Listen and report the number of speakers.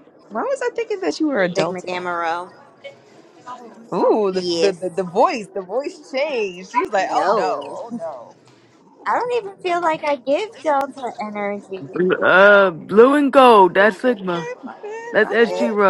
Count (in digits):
3